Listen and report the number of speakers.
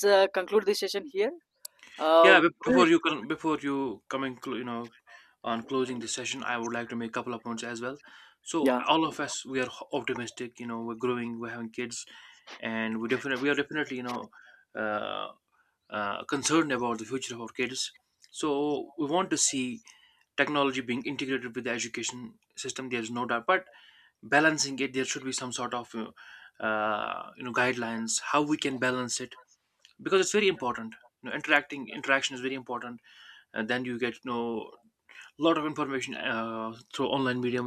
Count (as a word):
two